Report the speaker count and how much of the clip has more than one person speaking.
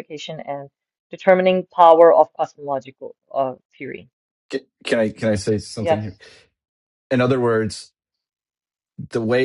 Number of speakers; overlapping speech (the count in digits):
2, about 3%